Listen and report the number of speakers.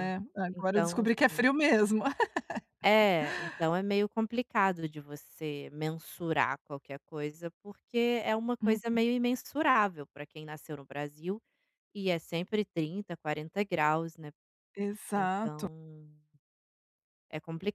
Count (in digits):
2